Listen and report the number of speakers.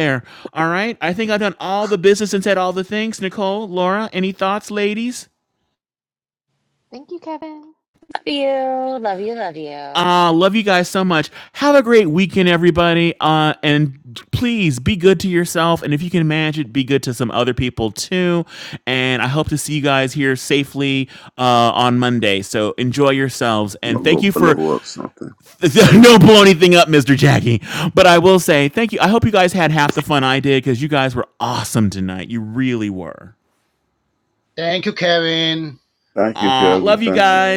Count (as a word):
five